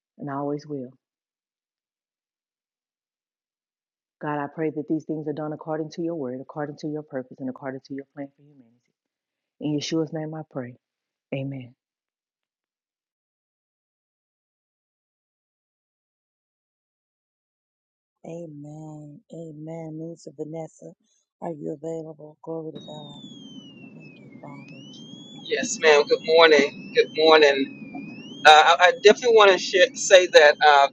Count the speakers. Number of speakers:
three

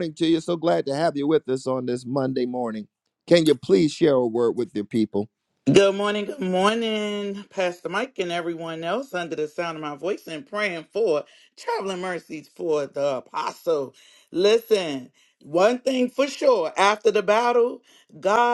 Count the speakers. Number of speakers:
two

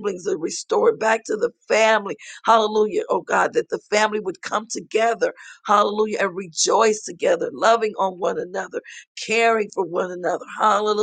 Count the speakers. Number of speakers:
one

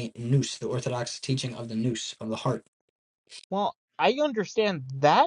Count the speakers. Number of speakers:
two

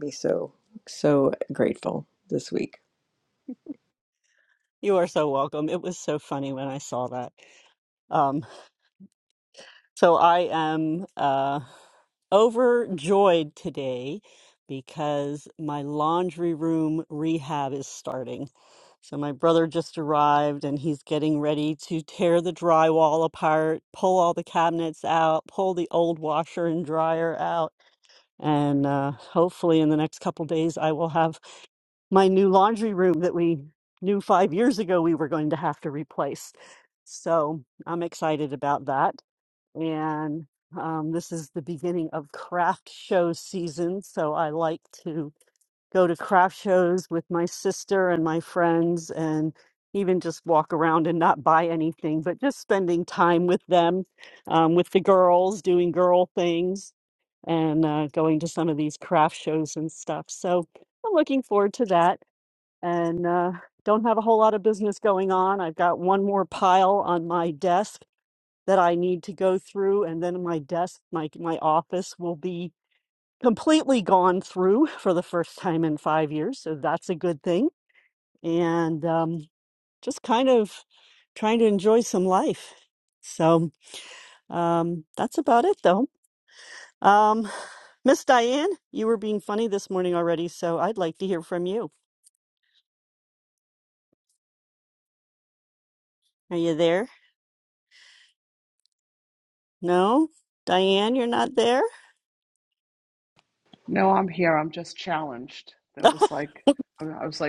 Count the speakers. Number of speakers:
three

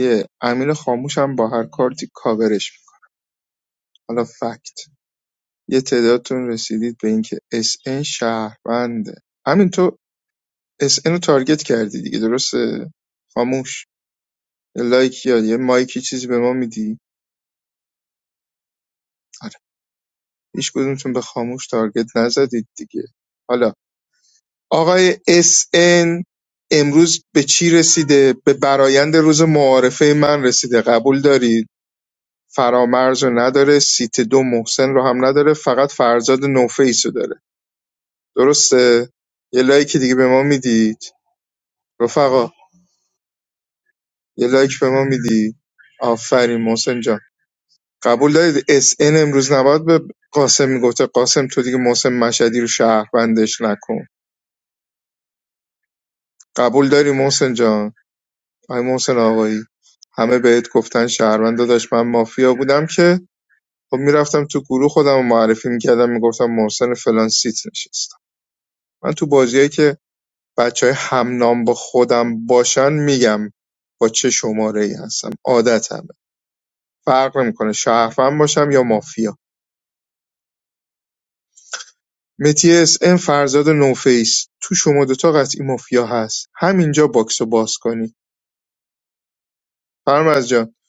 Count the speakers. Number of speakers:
one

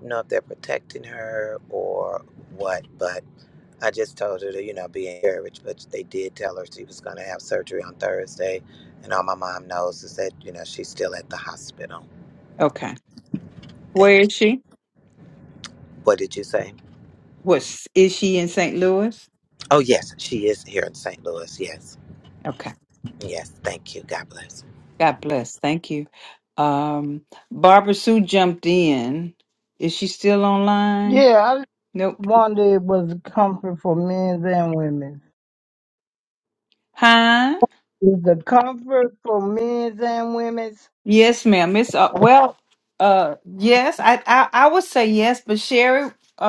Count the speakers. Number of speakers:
three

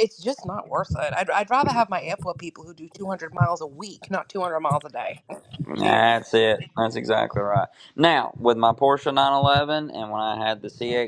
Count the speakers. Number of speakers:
two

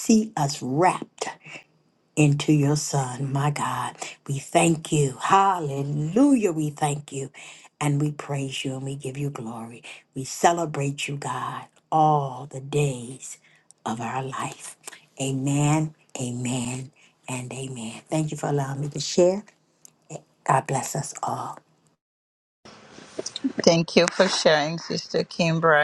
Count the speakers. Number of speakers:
two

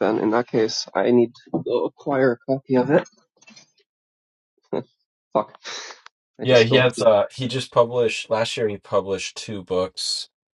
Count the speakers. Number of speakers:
two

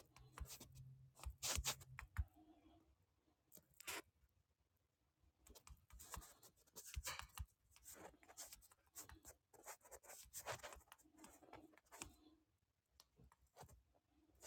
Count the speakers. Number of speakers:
zero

